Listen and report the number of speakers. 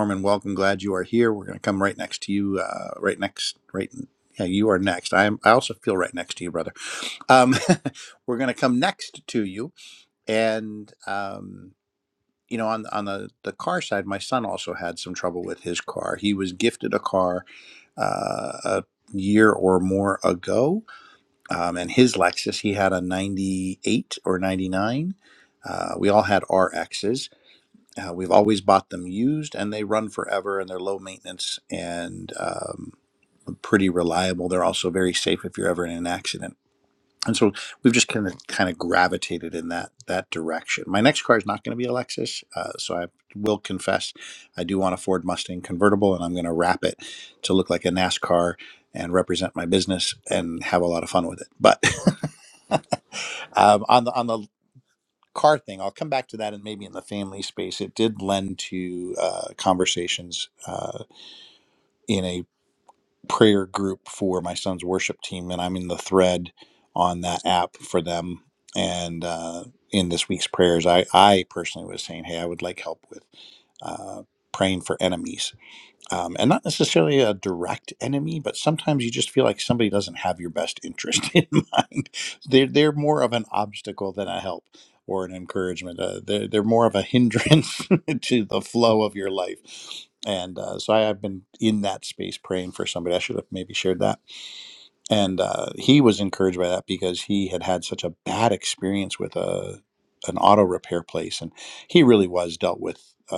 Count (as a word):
one